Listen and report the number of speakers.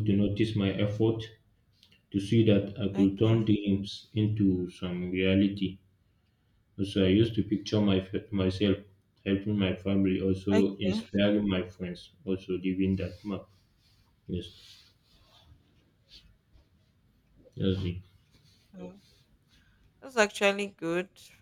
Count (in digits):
2